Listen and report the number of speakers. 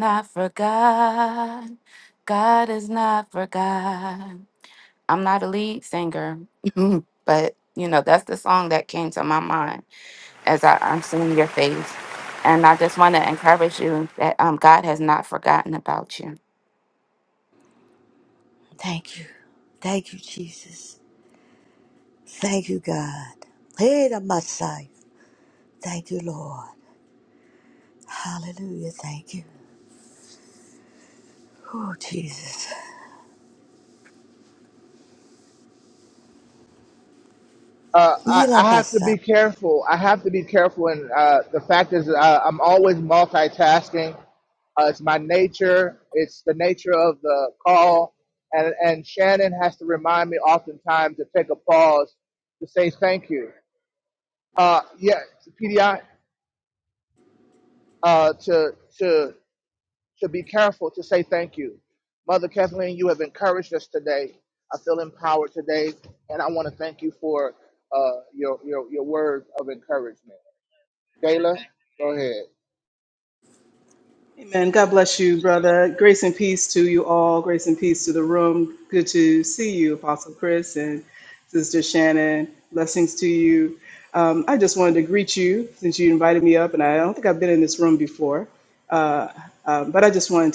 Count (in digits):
4